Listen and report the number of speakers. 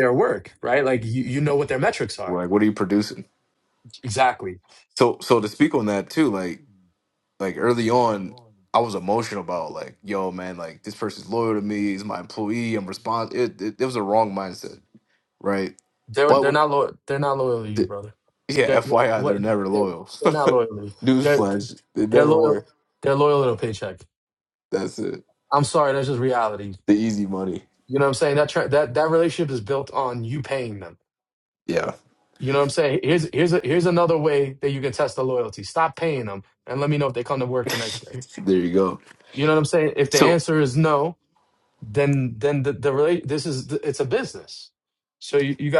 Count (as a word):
two